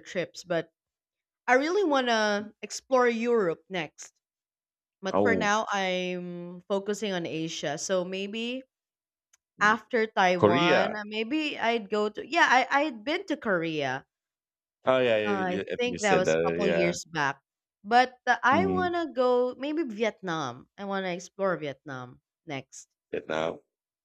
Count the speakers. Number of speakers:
2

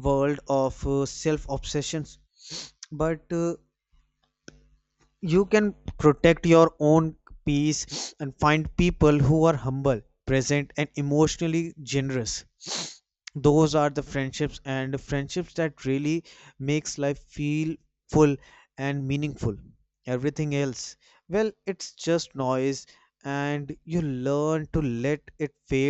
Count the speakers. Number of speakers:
1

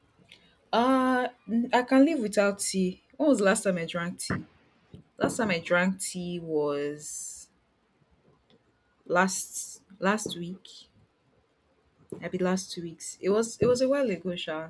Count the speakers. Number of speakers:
1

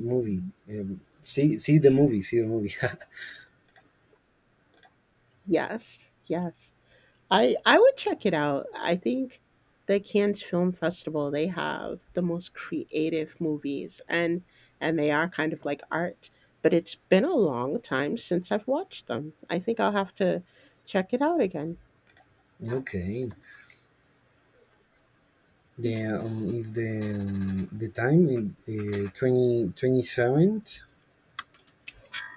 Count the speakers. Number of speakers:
2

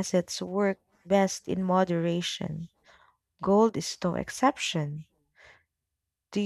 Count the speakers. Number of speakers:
1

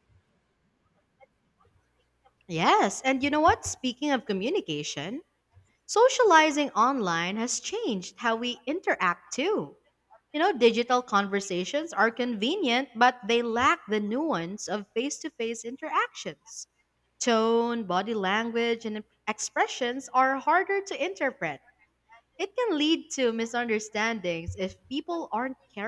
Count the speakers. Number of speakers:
1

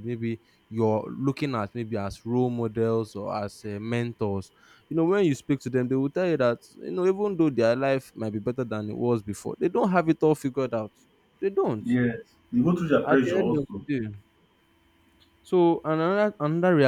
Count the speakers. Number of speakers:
2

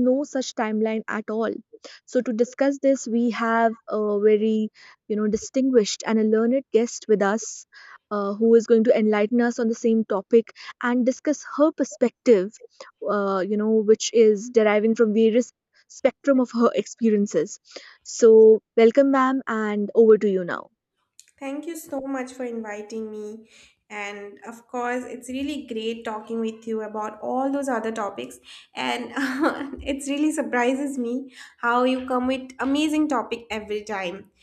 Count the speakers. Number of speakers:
2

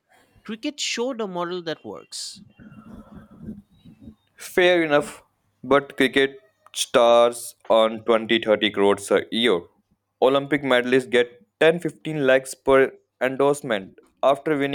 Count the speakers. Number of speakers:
2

